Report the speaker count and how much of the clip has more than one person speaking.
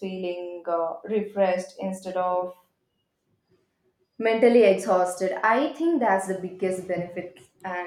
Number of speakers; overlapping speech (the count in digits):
1, no overlap